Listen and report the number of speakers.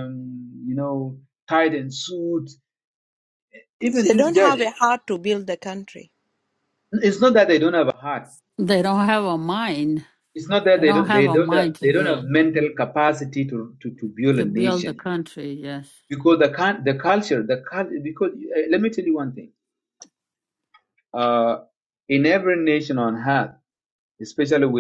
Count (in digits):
3